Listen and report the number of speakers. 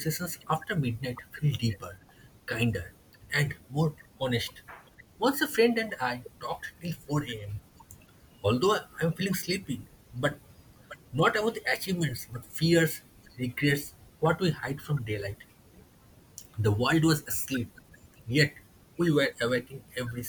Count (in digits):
1